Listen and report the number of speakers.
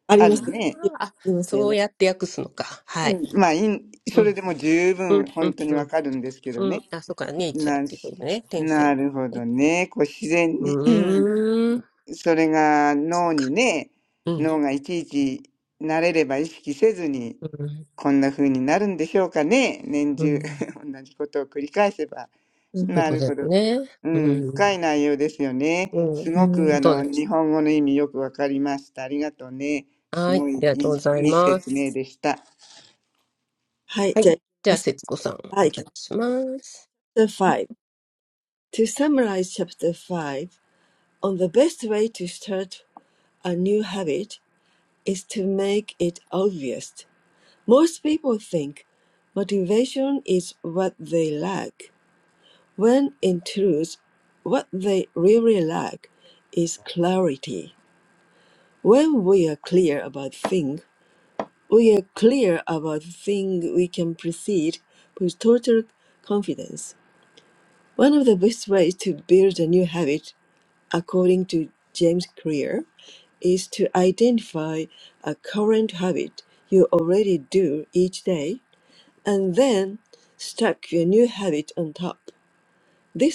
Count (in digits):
3